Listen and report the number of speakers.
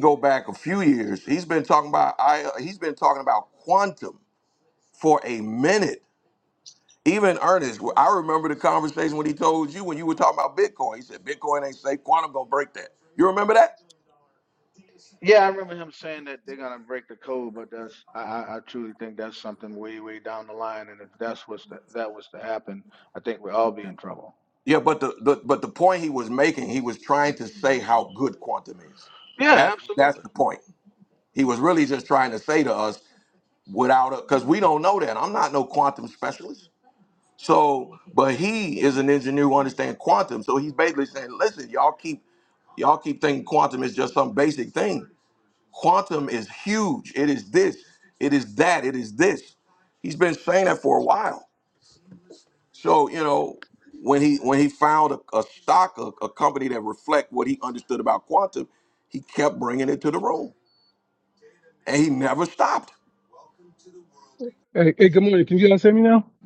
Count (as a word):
three